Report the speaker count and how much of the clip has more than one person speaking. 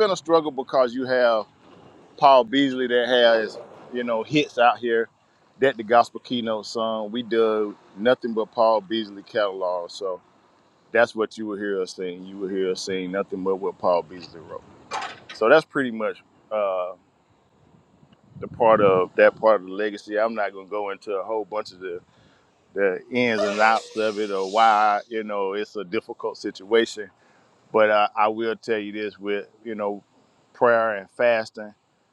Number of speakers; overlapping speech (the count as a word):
one, no overlap